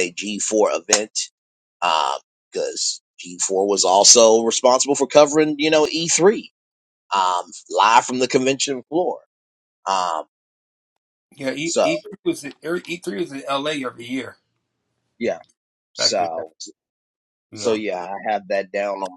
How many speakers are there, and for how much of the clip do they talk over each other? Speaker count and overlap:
two, about 4%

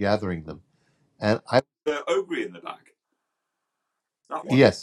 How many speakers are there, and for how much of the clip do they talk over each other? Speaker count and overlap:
two, about 4%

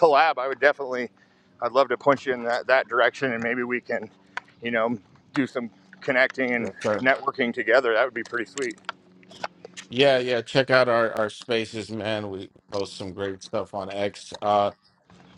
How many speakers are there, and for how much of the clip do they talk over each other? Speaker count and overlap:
two, about 3%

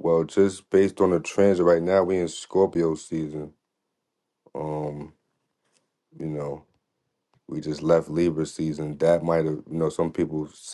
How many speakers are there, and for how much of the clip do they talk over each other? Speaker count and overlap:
one, no overlap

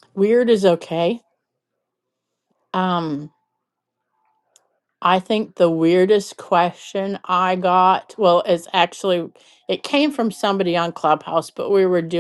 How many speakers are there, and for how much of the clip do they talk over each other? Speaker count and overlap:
one, no overlap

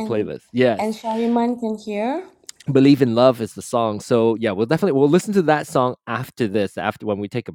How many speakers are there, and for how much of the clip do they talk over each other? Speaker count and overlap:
two, about 5%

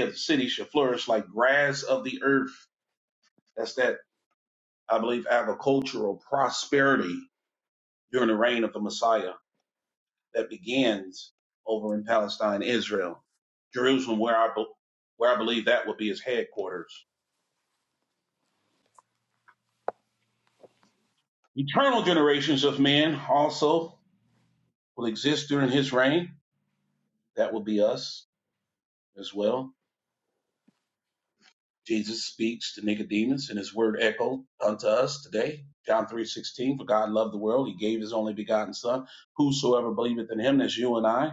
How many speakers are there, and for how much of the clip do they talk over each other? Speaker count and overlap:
one, no overlap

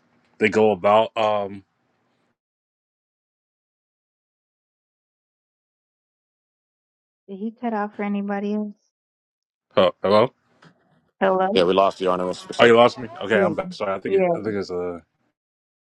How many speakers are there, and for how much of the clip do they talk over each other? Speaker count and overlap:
three, about 5%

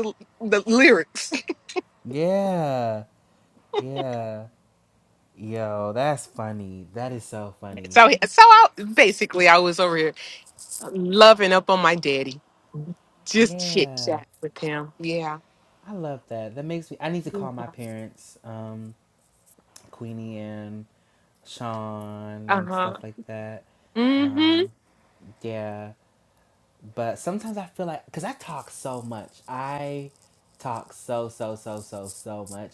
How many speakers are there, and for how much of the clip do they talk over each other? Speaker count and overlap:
two, about 5%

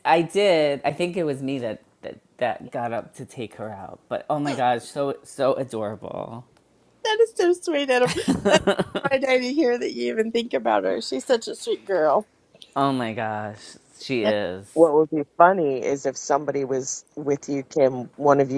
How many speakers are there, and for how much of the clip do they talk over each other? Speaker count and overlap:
three, about 1%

